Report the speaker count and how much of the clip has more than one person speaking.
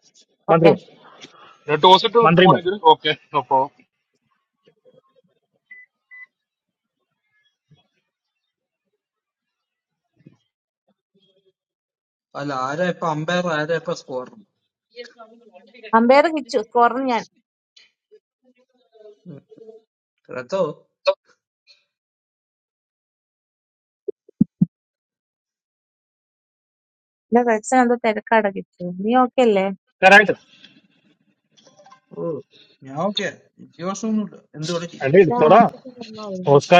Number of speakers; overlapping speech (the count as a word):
four, about 3%